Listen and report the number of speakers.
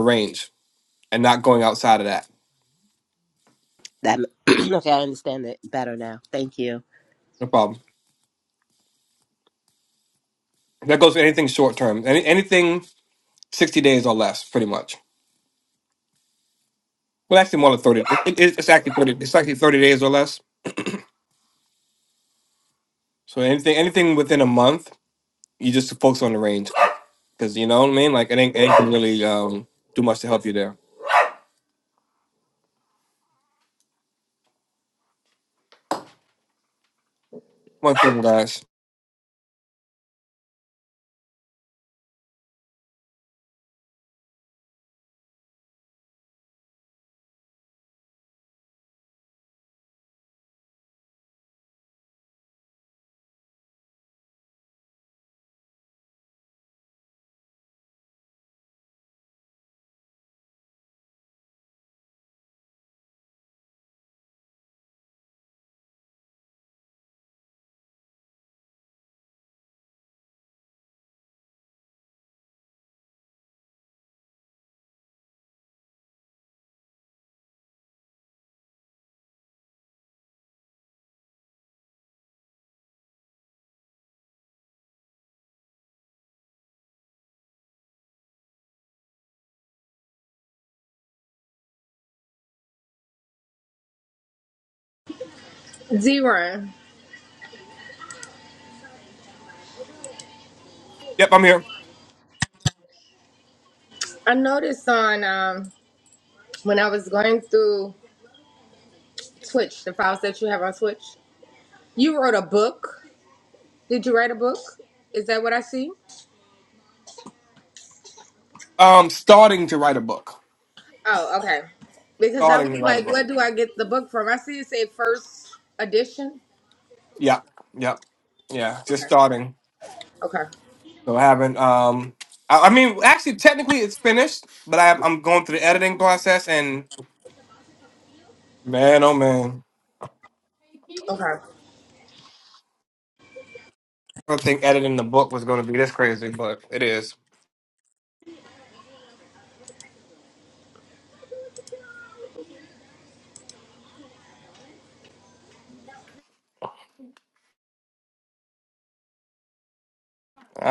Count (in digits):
3